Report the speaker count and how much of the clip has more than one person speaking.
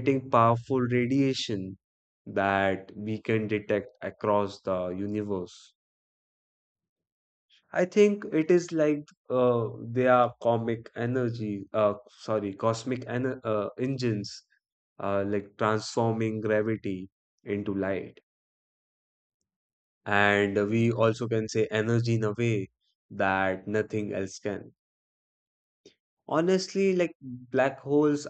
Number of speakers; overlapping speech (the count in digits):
1, no overlap